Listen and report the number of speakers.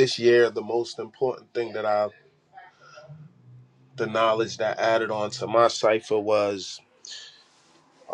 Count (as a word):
one